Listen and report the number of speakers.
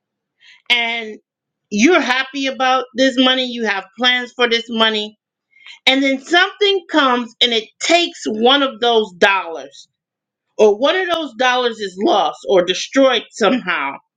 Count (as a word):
one